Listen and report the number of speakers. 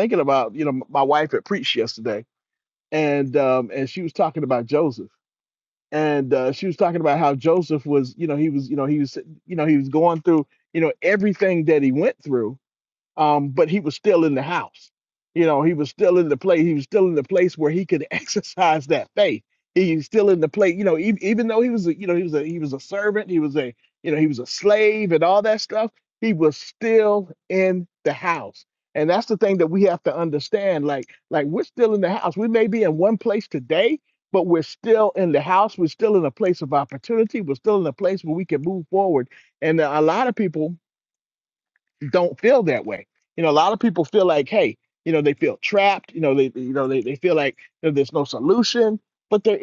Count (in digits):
1